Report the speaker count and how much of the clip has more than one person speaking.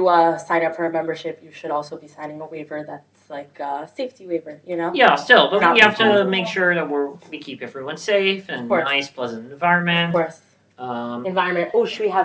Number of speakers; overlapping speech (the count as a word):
two, about 14%